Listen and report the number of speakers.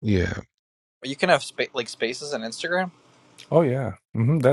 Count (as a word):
two